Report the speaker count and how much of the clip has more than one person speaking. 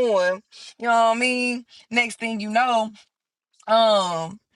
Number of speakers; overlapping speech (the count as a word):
one, no overlap